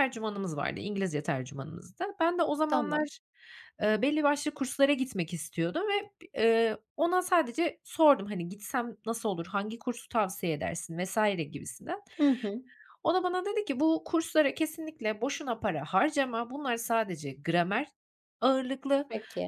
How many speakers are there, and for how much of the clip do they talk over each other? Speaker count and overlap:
two, about 2%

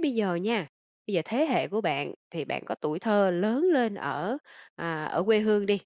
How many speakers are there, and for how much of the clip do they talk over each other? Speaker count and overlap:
one, no overlap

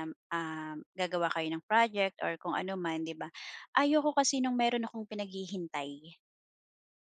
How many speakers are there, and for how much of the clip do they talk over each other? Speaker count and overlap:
one, no overlap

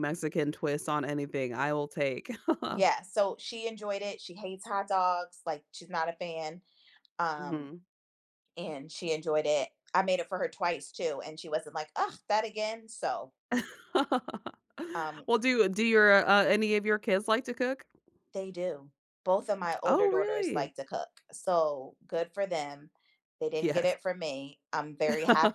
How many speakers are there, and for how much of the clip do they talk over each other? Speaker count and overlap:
two, about 6%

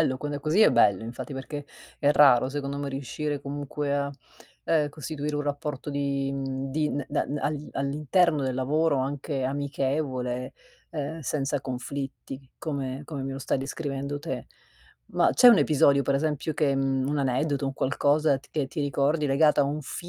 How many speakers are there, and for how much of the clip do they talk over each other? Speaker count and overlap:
one, no overlap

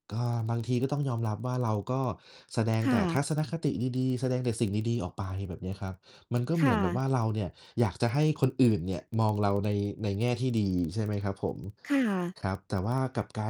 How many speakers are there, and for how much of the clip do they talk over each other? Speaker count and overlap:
two, about 6%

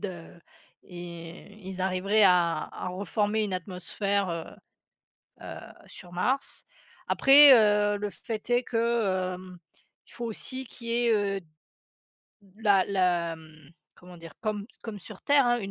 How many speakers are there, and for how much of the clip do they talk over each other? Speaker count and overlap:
one, no overlap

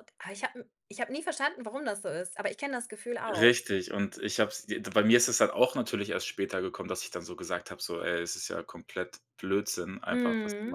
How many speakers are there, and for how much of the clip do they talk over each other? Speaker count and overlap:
two, about 8%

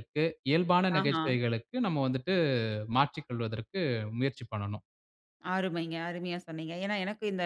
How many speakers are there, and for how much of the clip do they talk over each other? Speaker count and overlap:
two, about 4%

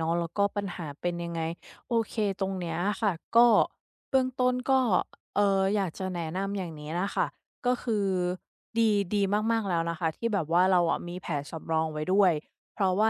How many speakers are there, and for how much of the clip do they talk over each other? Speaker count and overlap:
one, no overlap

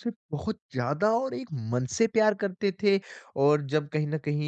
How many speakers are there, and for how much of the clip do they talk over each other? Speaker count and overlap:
one, no overlap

